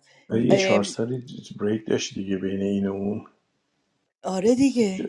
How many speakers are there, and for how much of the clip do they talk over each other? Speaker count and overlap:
two, about 10%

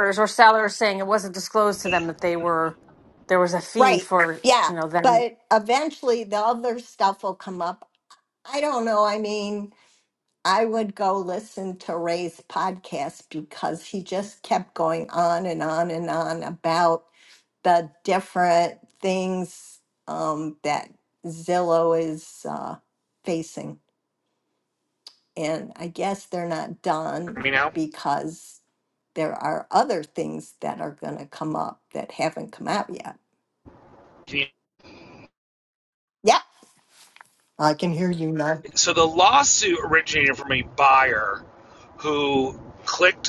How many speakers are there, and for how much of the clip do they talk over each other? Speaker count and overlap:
three, about 3%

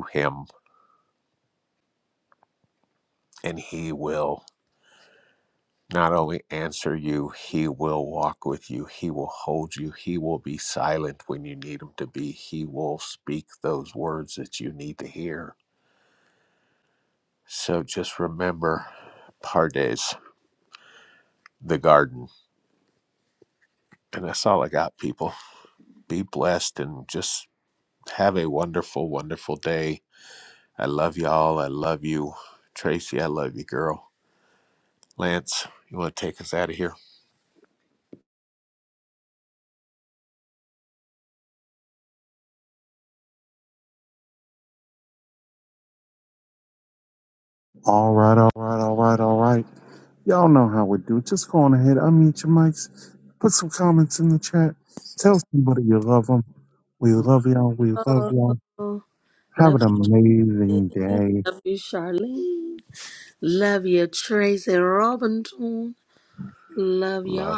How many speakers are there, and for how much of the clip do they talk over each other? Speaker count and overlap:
three, about 2%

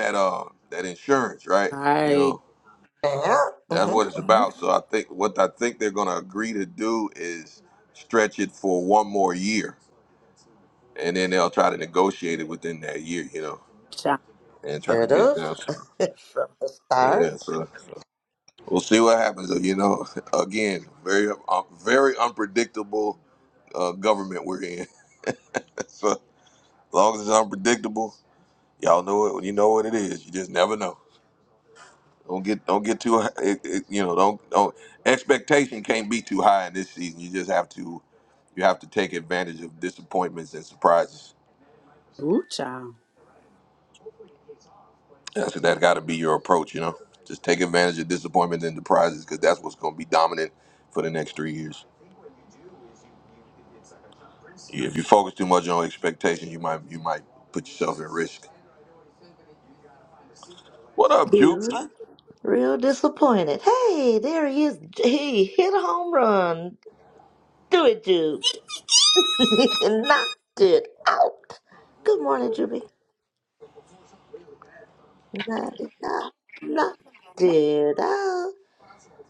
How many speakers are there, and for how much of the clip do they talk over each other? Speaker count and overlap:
three, about 3%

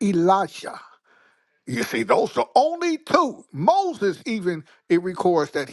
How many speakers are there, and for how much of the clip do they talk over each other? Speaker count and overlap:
one, no overlap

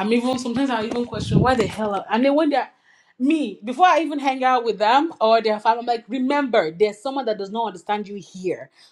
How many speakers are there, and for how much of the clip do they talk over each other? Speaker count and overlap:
one, no overlap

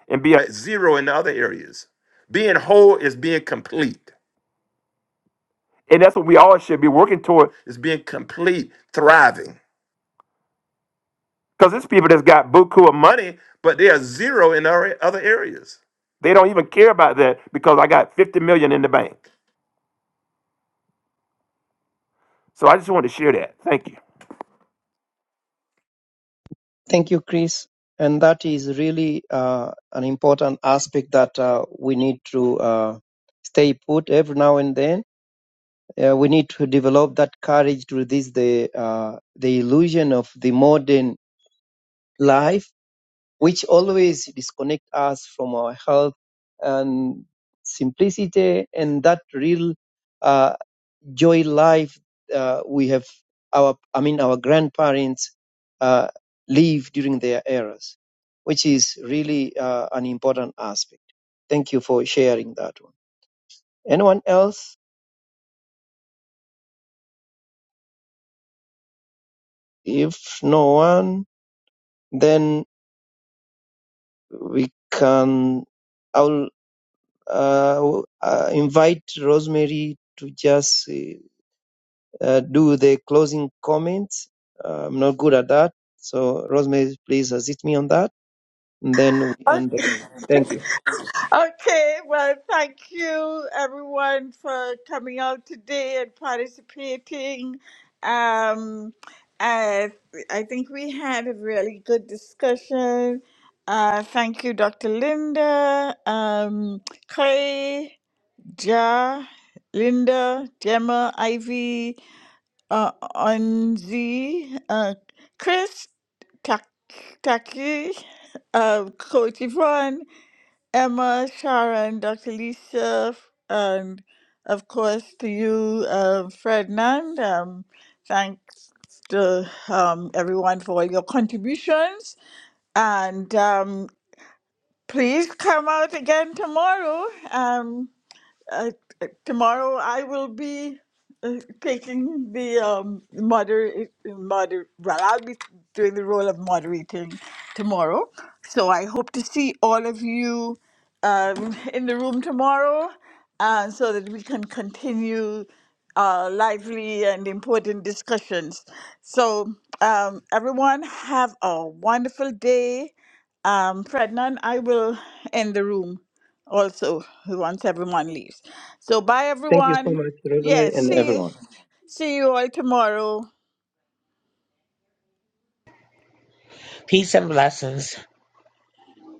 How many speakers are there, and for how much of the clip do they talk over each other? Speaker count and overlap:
four, about 1%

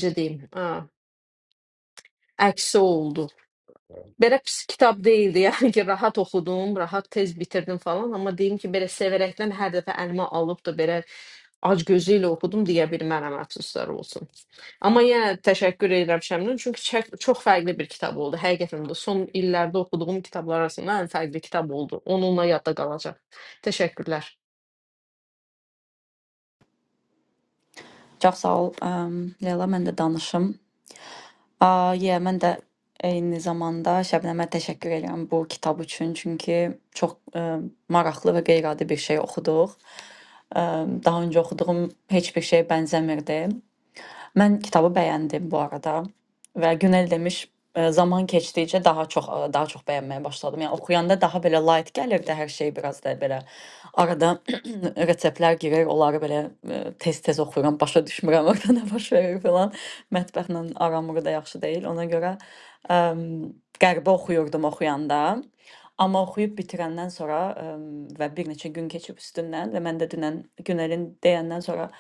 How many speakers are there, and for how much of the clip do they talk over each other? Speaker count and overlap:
two, no overlap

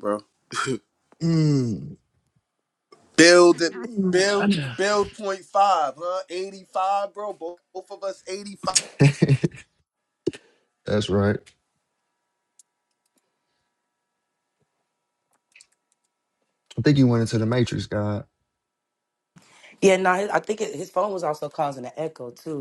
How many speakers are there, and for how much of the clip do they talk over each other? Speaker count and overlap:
three, about 2%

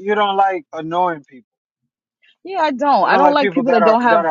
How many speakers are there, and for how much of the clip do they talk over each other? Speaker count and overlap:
two, about 28%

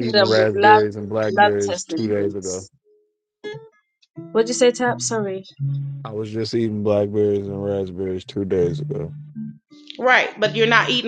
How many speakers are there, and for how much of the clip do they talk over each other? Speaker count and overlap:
three, about 17%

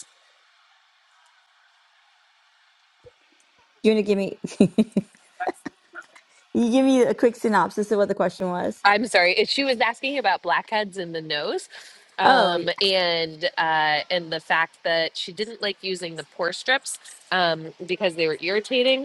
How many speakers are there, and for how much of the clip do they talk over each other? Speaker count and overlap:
two, about 2%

